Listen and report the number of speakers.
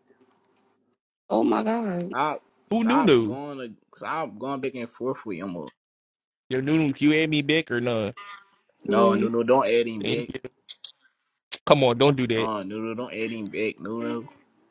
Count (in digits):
3